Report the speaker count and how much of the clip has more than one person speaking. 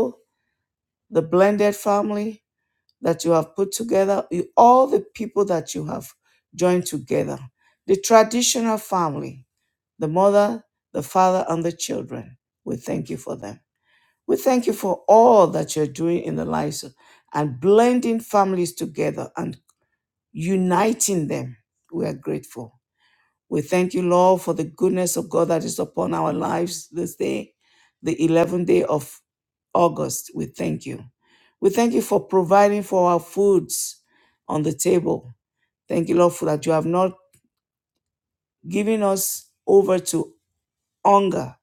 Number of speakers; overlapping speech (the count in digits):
1, no overlap